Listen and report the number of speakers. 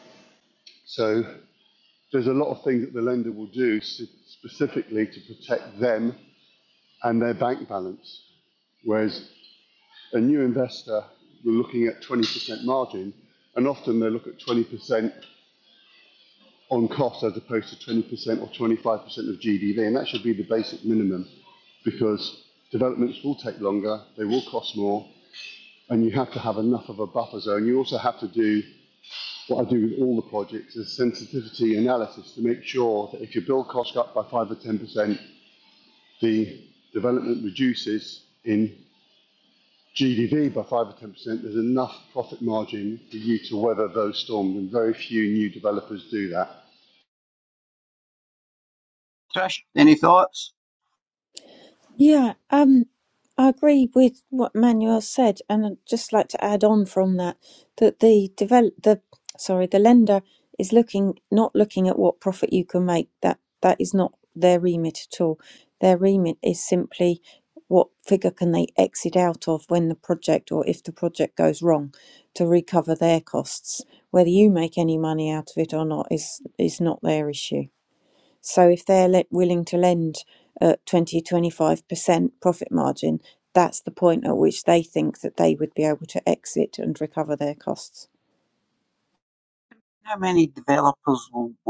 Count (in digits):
3